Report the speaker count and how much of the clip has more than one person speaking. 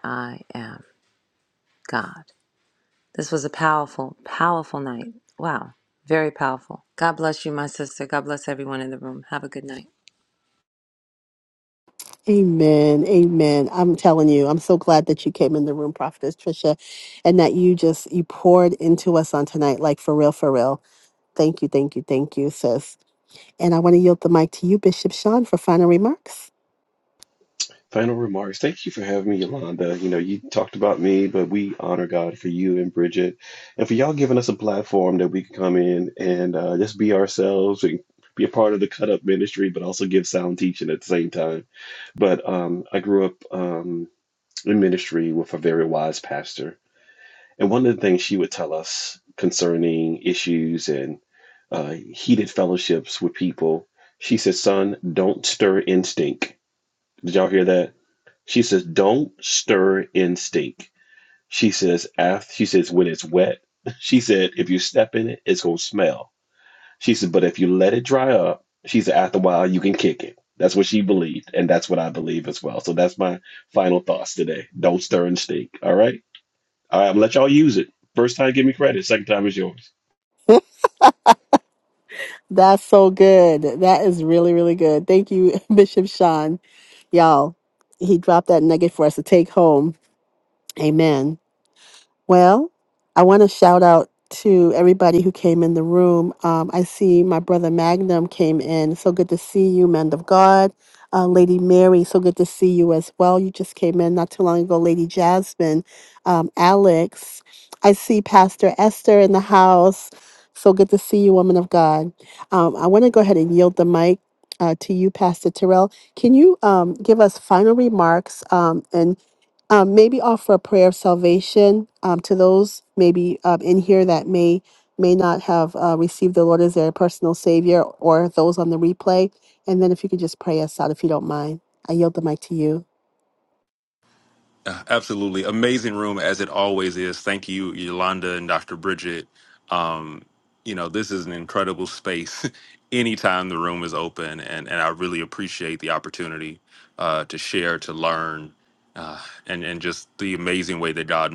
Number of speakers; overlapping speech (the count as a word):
four, no overlap